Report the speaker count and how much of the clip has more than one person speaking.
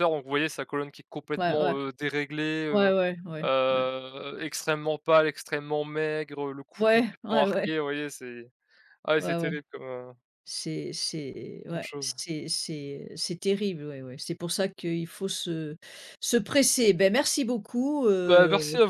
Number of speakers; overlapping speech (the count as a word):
two, about 16%